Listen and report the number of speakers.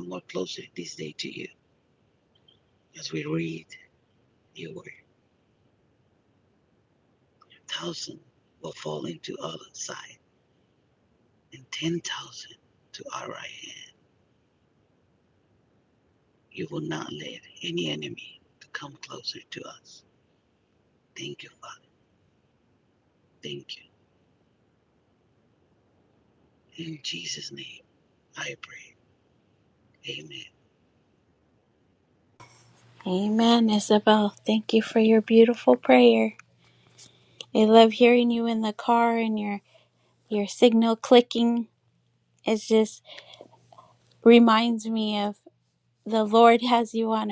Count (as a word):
two